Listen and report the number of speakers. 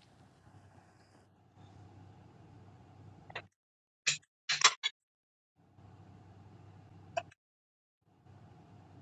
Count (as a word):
zero